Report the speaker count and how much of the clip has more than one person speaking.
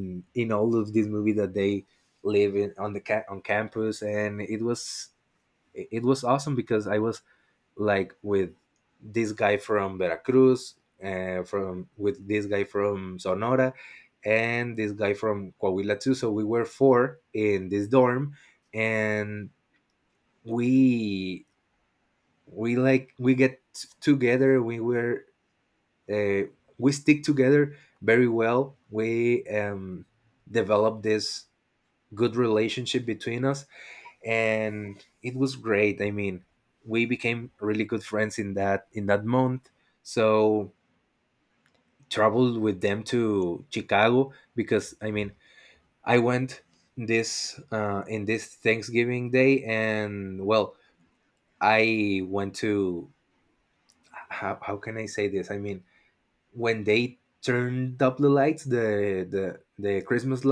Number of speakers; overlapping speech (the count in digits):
1, no overlap